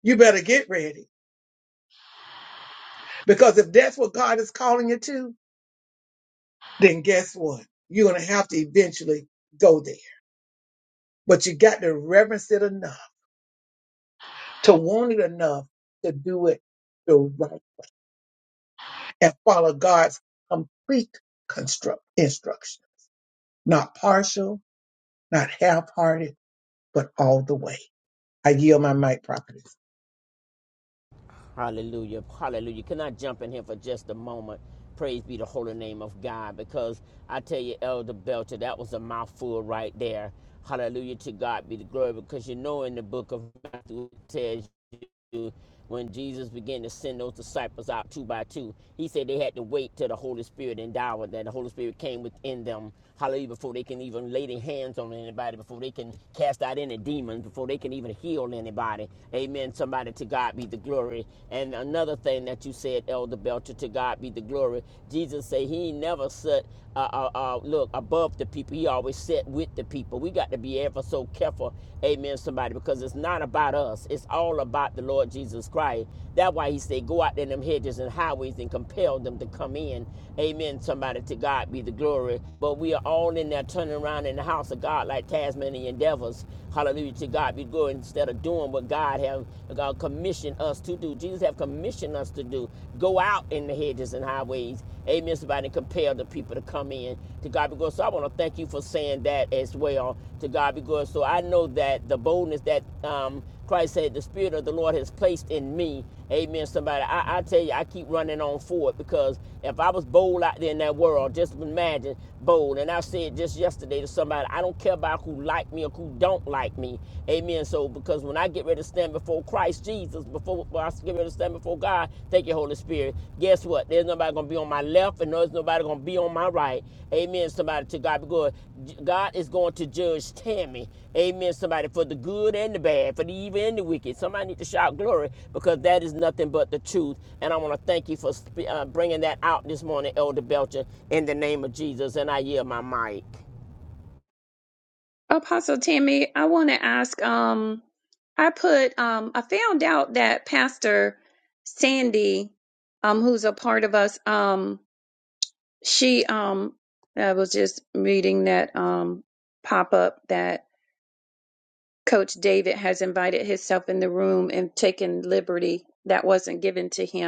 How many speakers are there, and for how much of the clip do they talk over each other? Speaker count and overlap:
3, no overlap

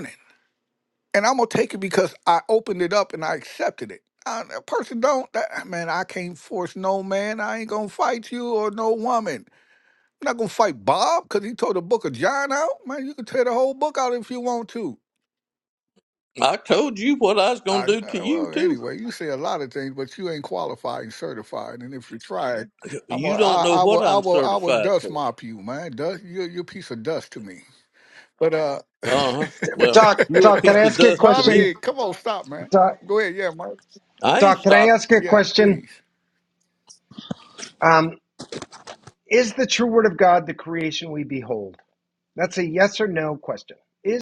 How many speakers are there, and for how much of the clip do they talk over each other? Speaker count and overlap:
3, about 14%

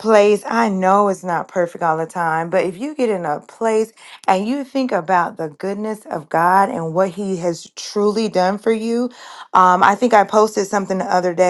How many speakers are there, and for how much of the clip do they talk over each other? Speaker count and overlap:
1, no overlap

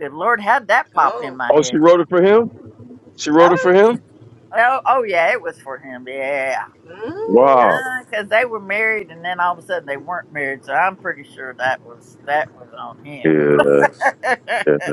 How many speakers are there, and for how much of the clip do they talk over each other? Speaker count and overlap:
3, about 12%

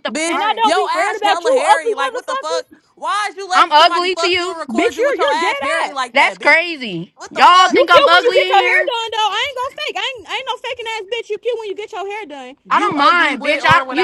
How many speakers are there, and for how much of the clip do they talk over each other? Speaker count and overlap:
3, about 59%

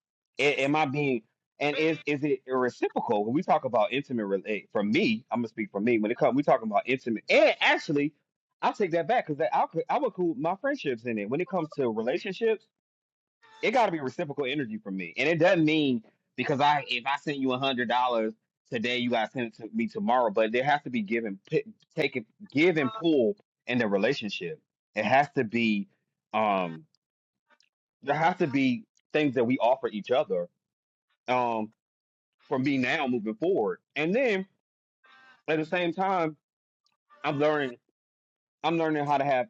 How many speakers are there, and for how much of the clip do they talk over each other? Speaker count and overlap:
1, no overlap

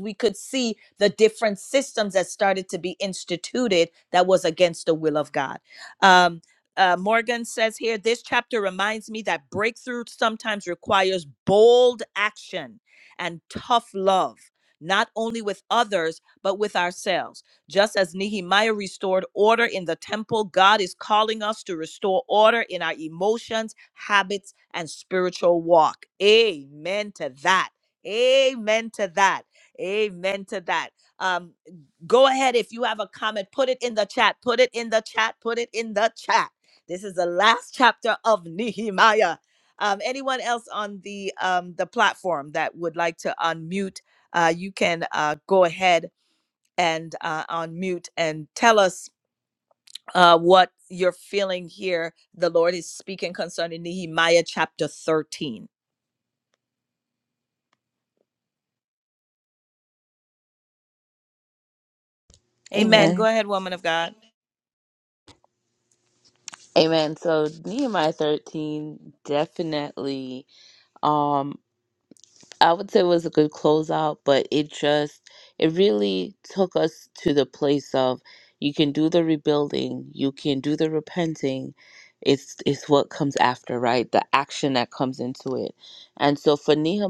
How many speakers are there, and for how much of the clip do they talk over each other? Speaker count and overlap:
2, about 1%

